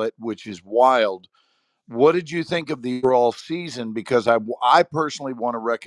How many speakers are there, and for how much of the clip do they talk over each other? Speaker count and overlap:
1, no overlap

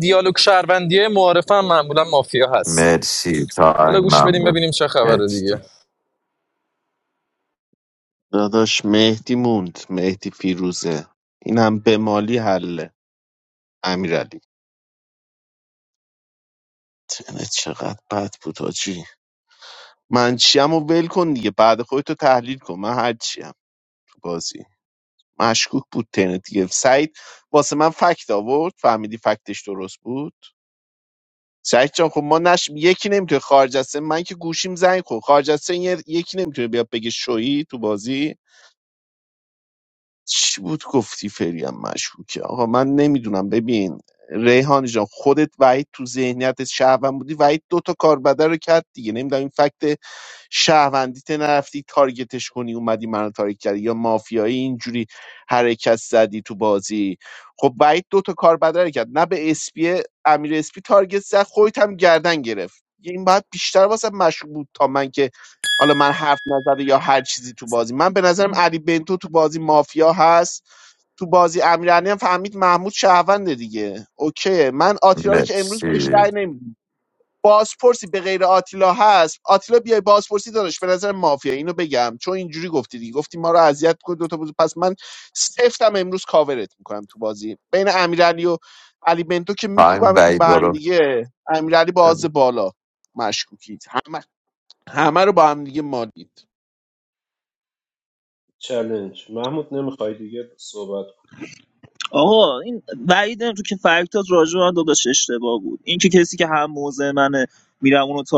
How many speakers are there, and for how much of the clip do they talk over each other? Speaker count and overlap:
5, about 3%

